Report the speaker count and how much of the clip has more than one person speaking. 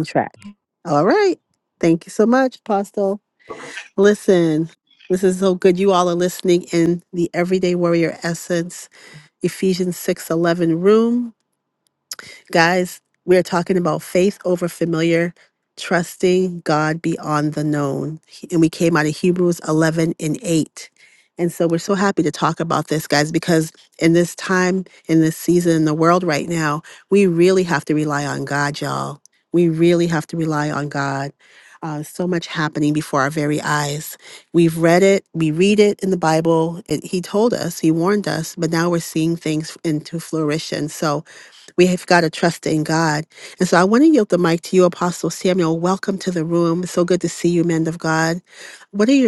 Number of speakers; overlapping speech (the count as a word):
one, no overlap